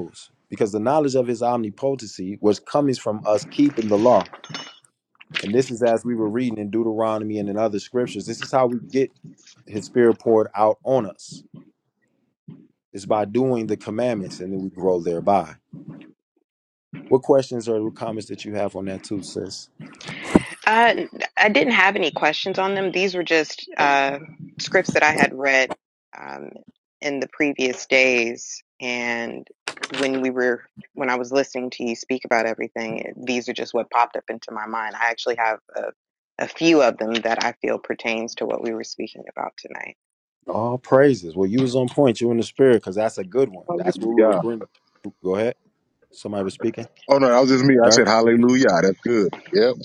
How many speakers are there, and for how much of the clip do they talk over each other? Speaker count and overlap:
3, about 2%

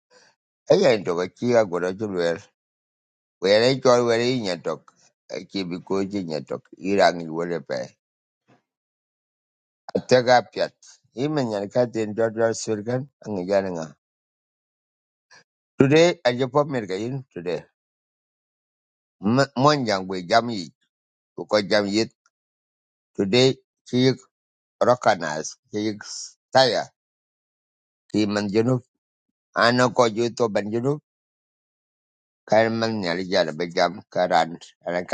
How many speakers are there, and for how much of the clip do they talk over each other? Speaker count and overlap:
1, no overlap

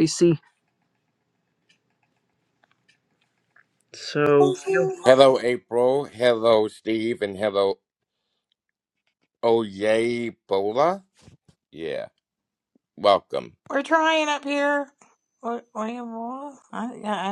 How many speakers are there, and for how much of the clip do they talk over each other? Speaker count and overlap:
3, about 3%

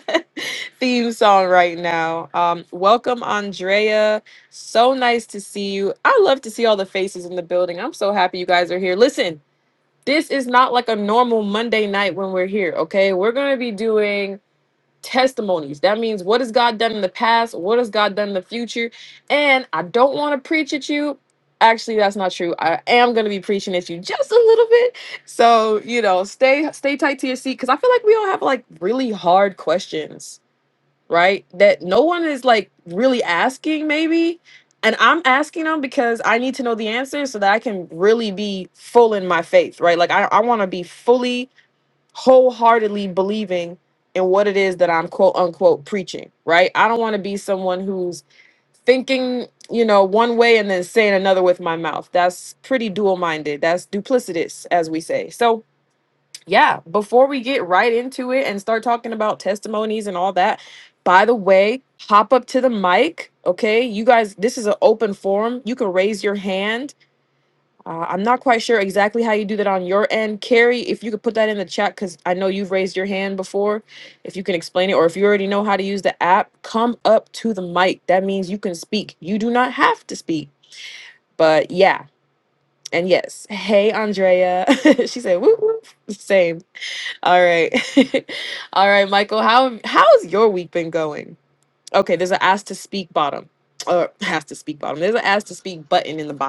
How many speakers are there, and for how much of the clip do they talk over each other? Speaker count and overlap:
1, no overlap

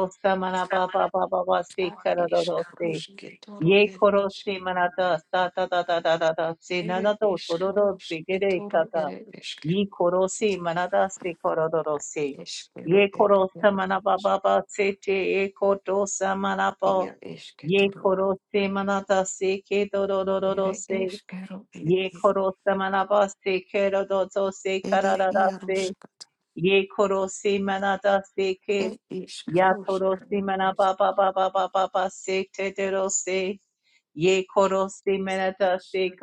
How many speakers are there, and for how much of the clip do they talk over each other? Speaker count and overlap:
2, about 25%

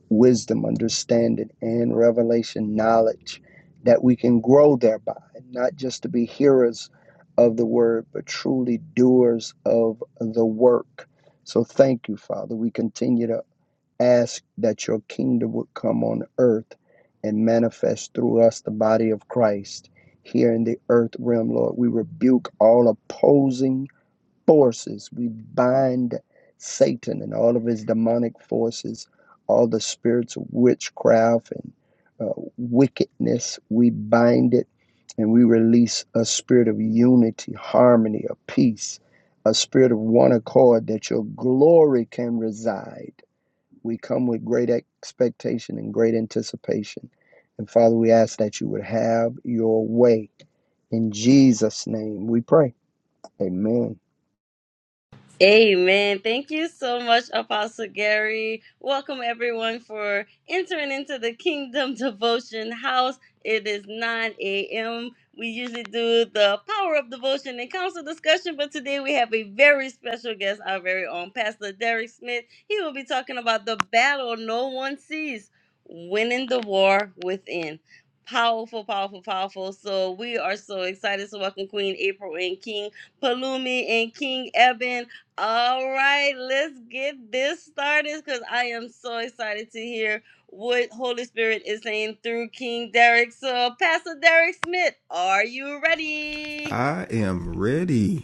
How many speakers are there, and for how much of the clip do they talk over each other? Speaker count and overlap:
3, under 1%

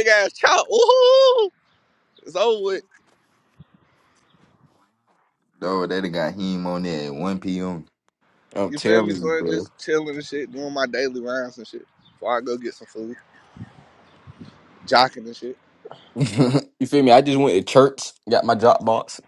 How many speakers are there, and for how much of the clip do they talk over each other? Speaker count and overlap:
3, about 5%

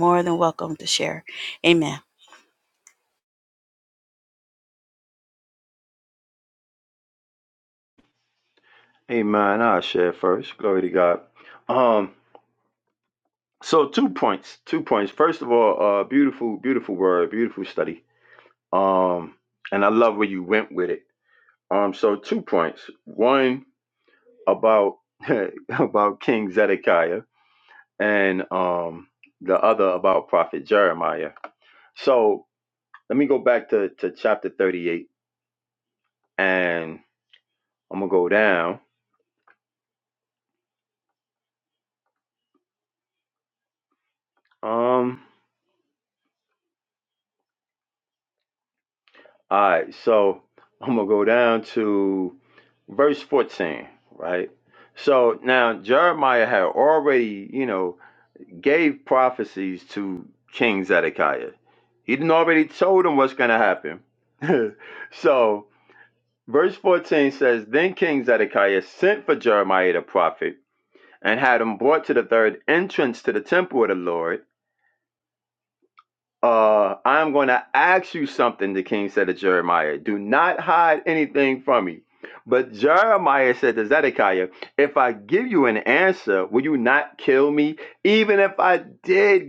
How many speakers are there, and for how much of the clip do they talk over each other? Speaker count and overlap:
2, no overlap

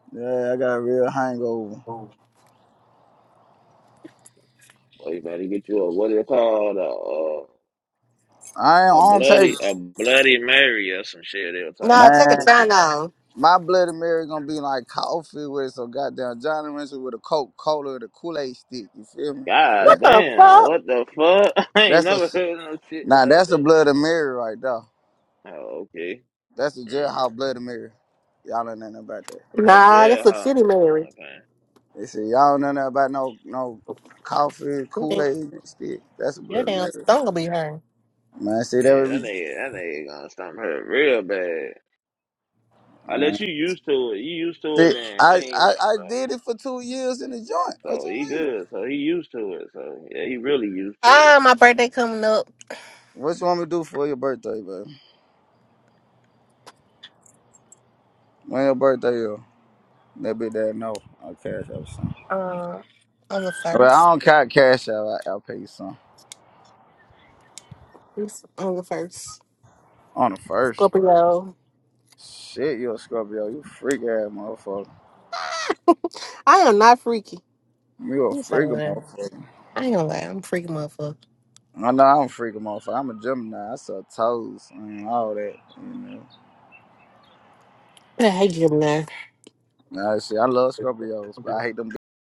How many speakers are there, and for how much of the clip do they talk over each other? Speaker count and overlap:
3, about 11%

